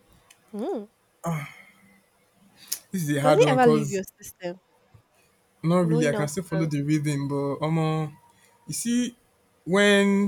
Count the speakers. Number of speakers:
2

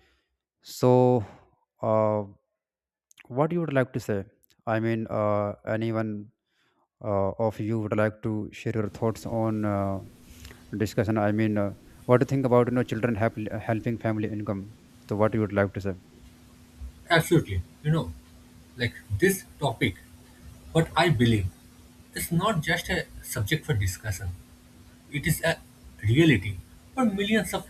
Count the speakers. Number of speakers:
2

